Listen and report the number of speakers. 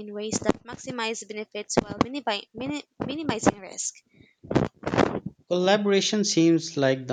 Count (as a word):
two